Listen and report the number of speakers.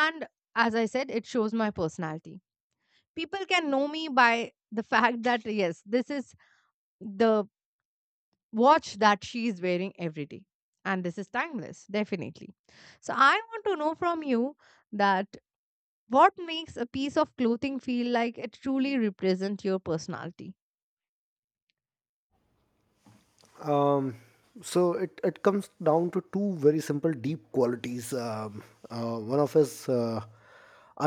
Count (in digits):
2